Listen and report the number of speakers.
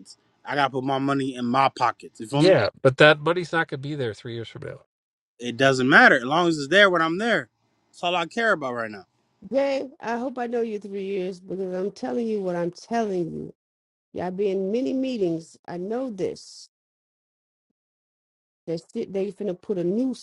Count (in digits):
3